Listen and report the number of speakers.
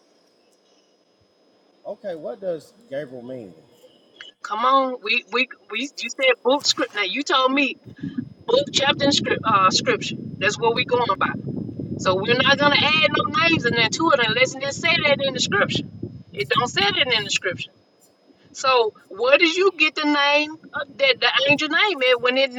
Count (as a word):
two